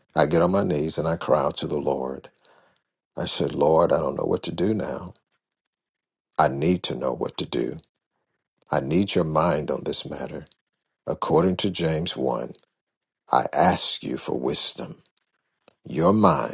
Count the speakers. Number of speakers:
1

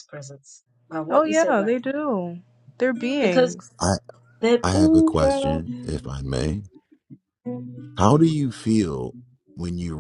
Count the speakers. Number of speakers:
3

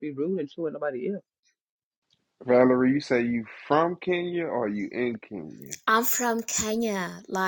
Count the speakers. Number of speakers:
3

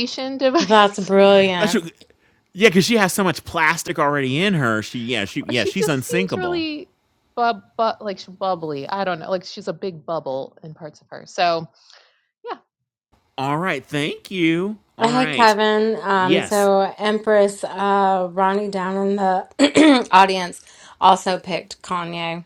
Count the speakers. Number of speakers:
3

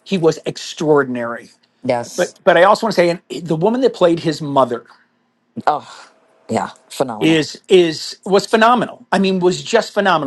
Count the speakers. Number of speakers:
2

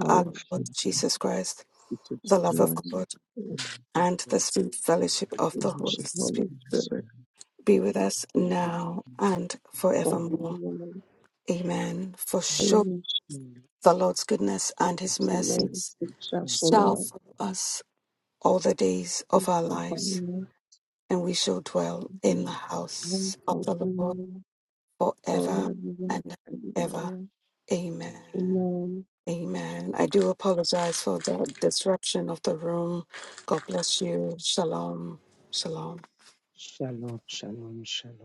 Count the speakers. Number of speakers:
3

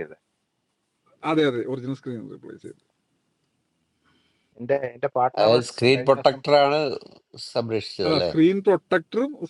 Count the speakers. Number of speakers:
3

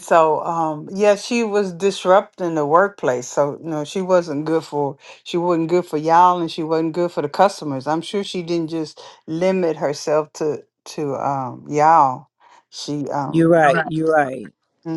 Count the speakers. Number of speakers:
2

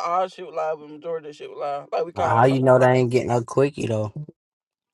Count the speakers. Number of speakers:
2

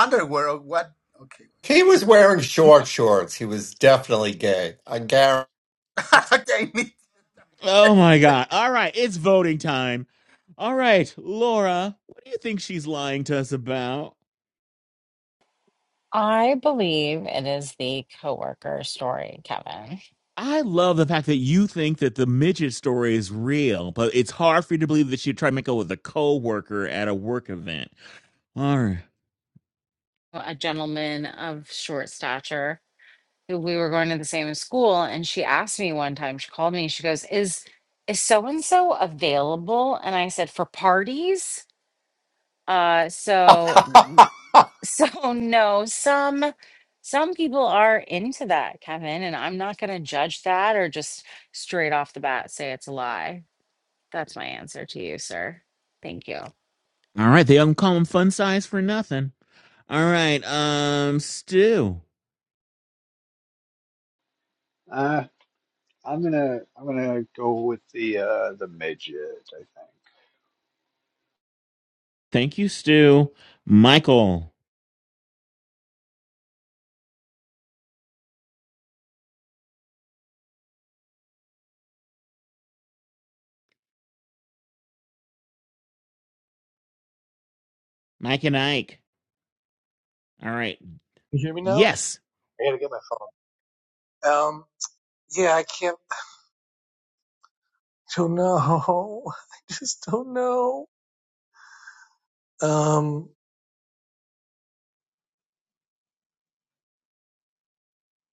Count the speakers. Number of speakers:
6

